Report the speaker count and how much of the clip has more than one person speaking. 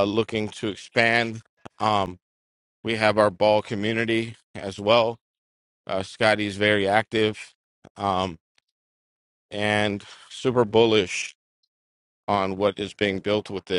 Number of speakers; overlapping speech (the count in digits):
1, no overlap